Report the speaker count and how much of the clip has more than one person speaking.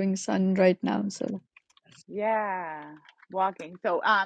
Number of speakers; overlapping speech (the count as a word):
two, no overlap